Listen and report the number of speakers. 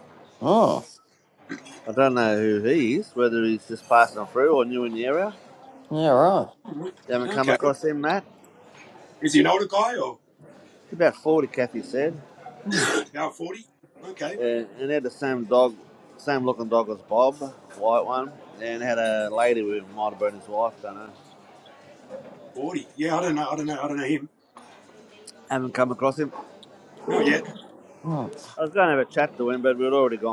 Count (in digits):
3